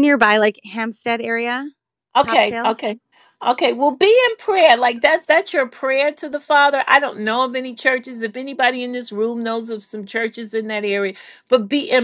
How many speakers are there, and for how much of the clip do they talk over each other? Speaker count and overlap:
two, about 4%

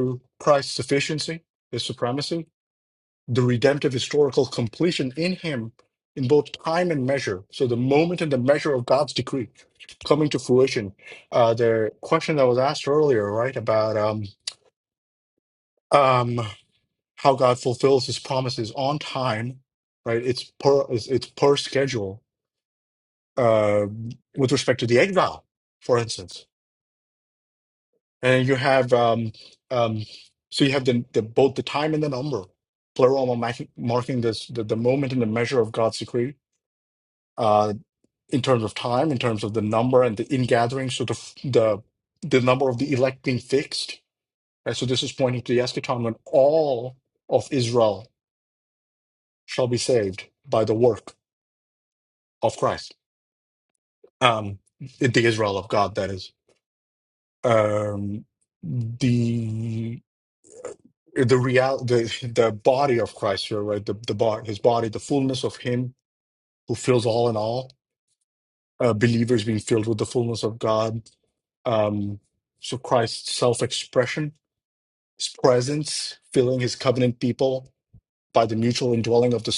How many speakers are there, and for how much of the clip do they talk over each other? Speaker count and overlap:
one, no overlap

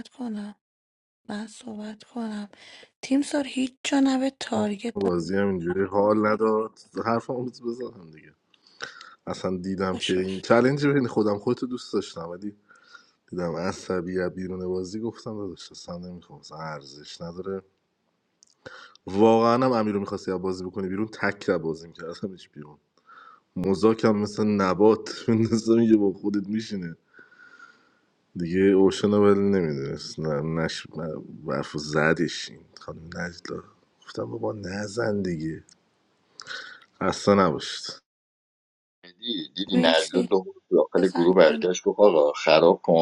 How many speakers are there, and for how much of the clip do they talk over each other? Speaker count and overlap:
three, about 4%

